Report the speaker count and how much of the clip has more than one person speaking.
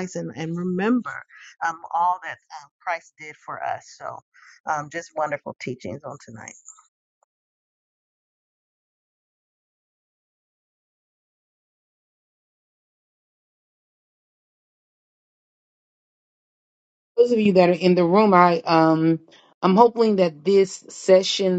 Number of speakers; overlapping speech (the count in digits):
2, no overlap